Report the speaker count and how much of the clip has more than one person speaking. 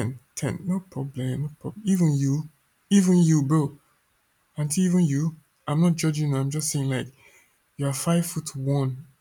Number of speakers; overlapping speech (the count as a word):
one, no overlap